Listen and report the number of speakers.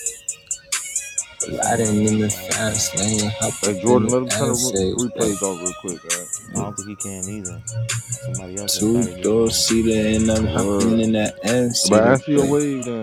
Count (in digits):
3